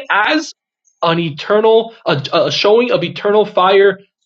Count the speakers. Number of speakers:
one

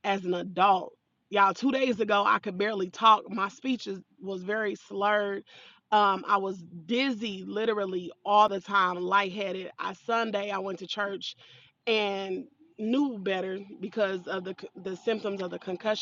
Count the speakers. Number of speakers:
one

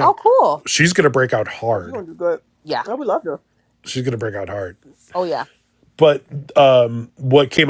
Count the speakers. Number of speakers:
three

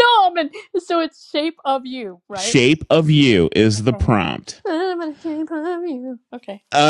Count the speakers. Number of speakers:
two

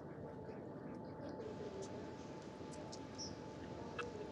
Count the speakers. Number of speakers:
zero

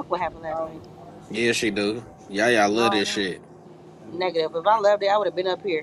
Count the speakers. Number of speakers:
two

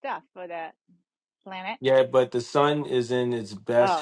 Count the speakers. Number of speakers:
two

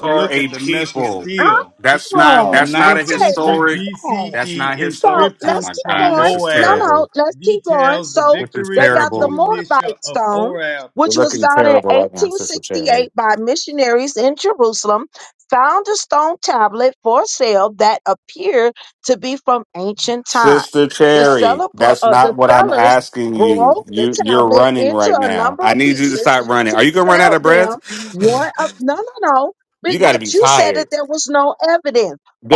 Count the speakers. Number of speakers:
three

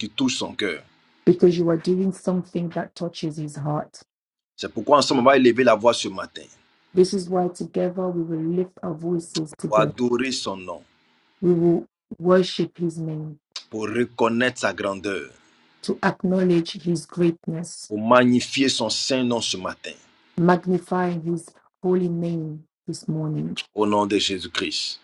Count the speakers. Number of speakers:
two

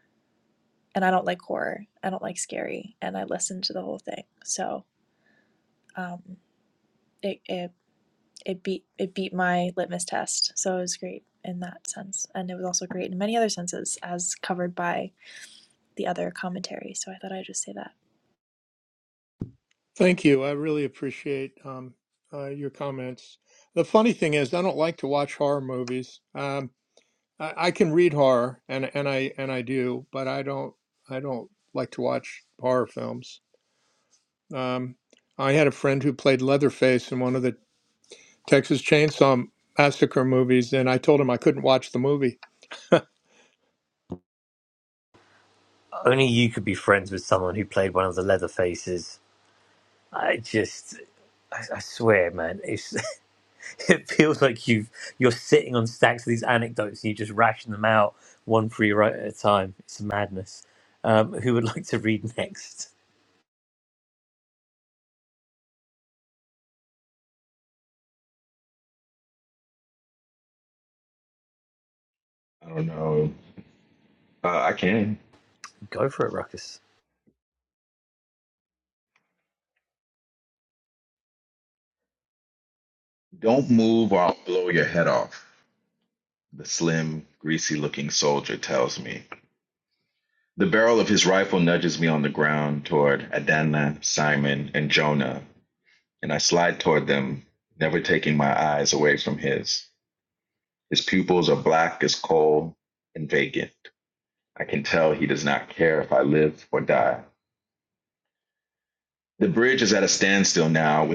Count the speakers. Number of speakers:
four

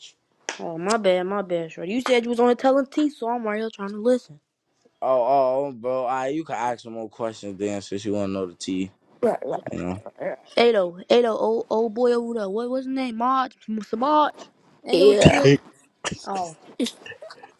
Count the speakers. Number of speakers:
three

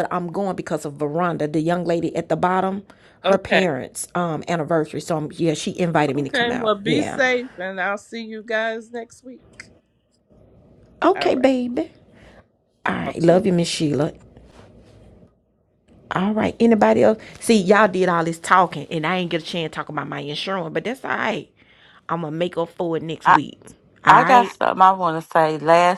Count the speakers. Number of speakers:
three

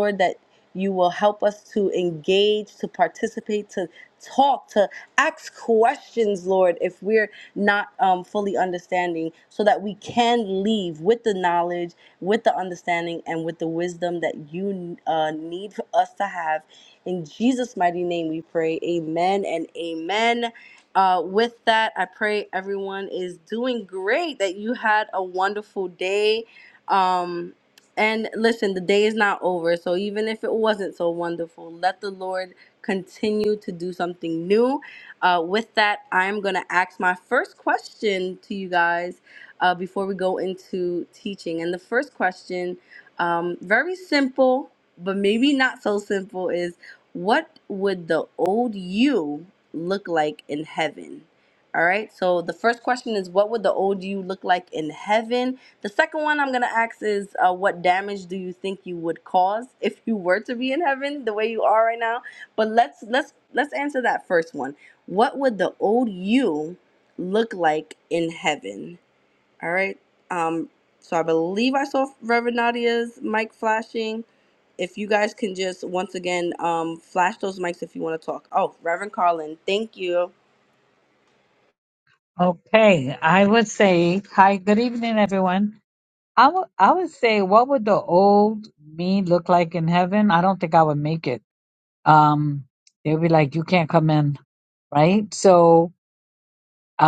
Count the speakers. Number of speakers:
two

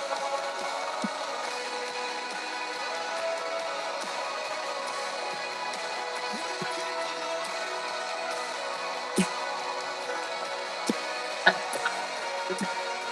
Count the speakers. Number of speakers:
zero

